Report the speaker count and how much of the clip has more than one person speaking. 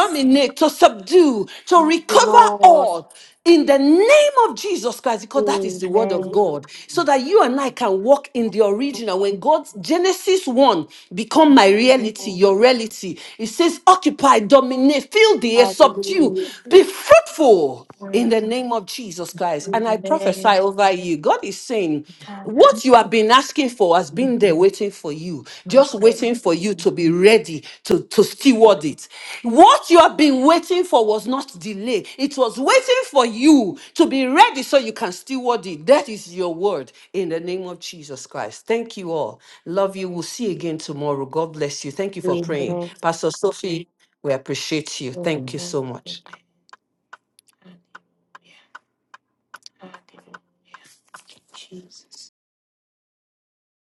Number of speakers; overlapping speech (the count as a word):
two, about 8%